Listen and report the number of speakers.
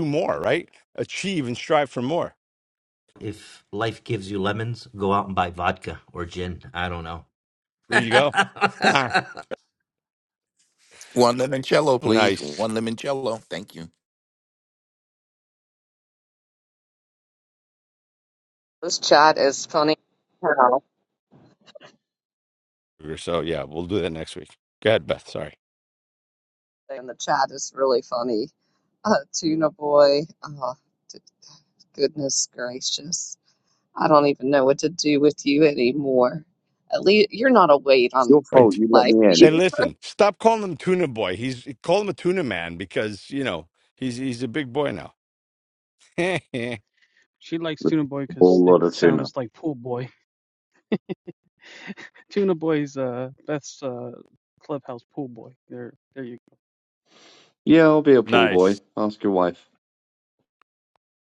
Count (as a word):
six